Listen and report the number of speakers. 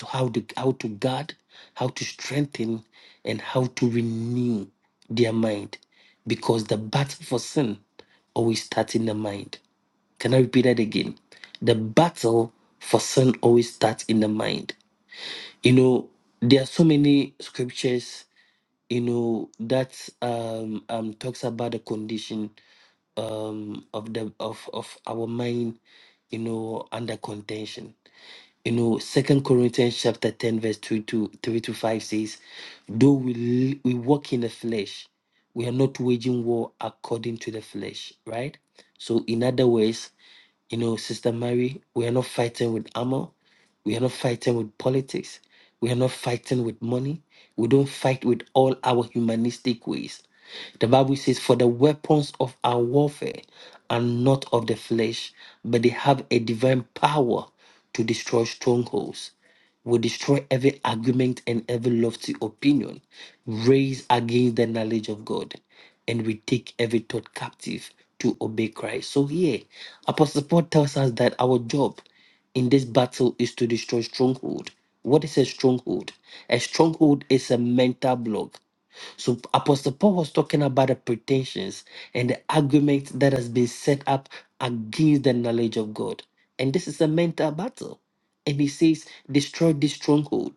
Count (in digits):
1